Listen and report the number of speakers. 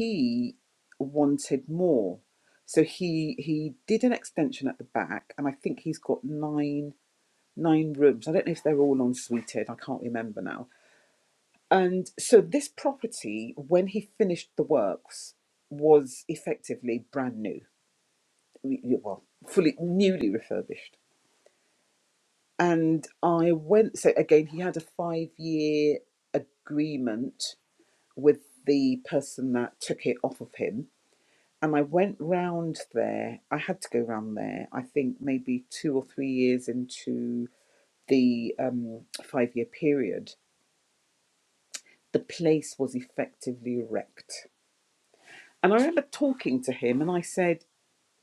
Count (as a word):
one